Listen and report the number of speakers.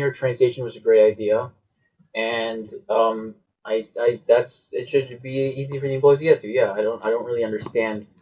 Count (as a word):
one